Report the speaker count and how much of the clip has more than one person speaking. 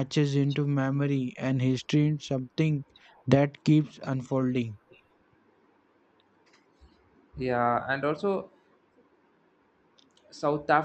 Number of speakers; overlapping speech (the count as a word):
two, no overlap